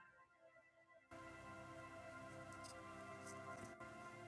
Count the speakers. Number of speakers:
zero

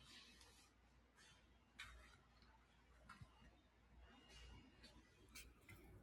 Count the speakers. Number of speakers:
zero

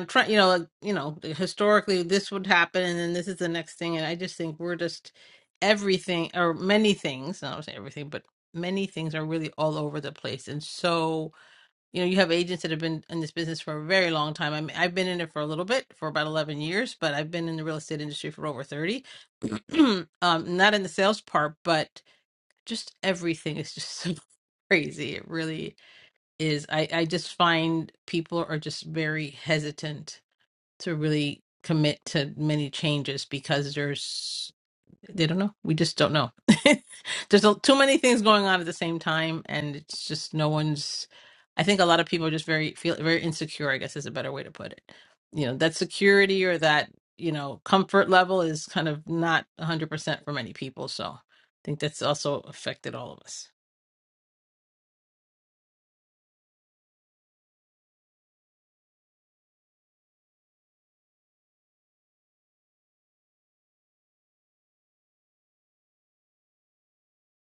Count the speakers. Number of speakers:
one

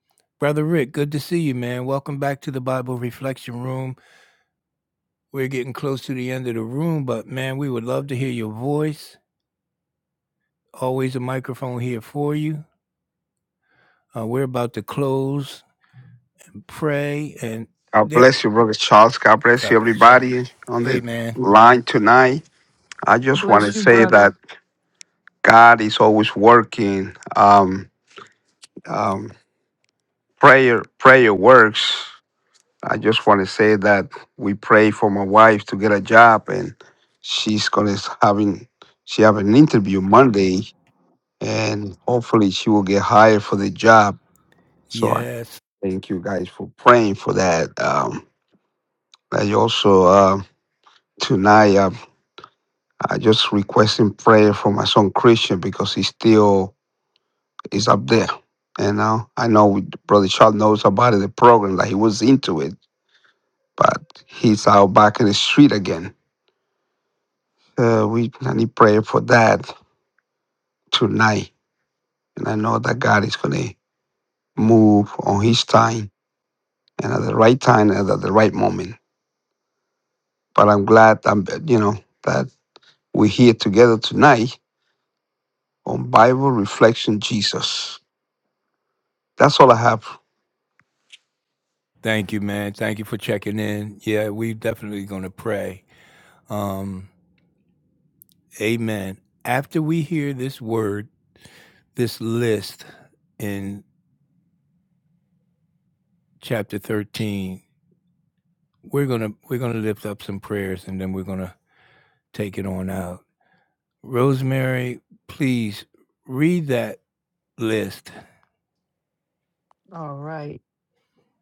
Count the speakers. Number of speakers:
three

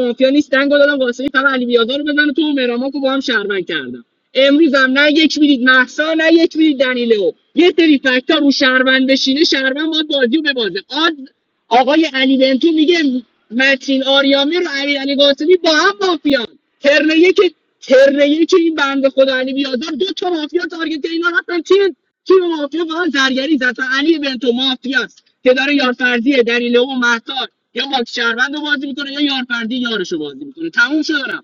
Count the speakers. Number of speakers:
one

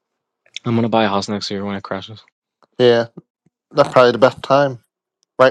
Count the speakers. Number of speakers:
two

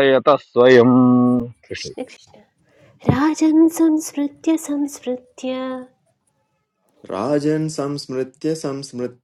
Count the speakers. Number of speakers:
three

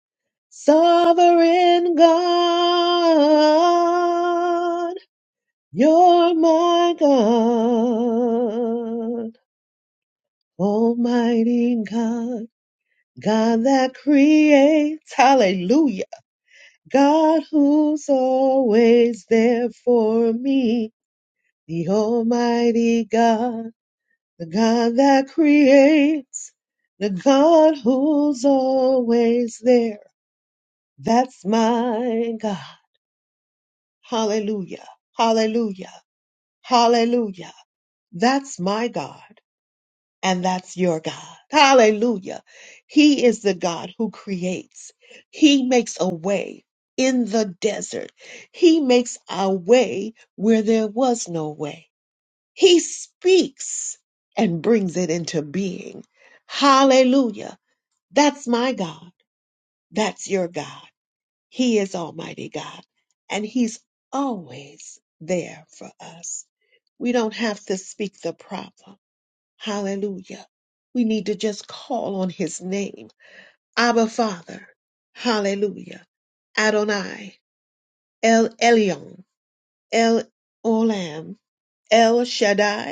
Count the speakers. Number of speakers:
one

